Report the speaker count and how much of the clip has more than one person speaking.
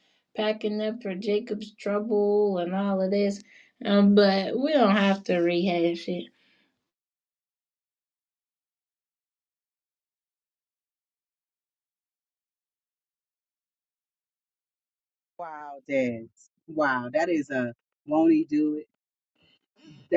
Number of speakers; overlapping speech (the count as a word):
two, no overlap